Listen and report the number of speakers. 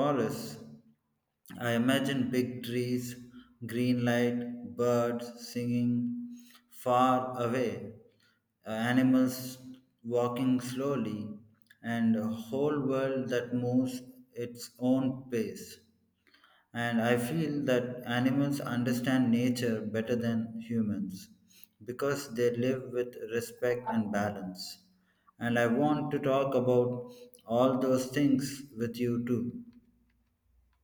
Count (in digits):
1